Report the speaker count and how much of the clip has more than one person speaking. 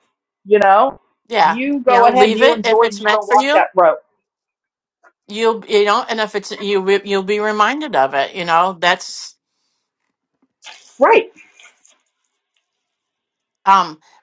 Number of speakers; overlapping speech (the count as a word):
two, about 15%